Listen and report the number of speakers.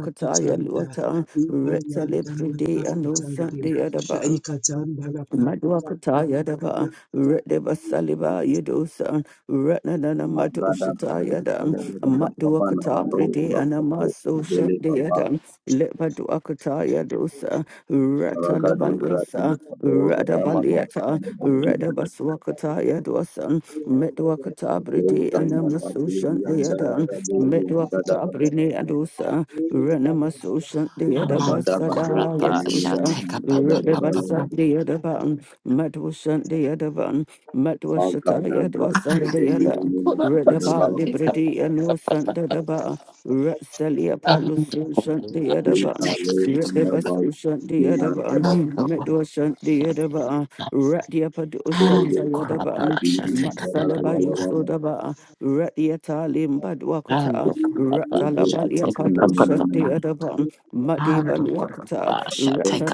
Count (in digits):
4